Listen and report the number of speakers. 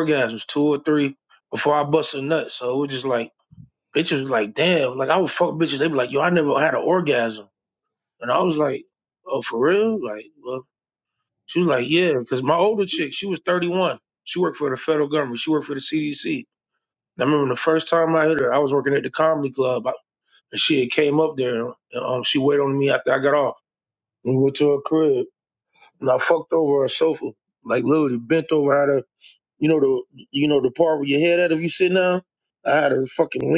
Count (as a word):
one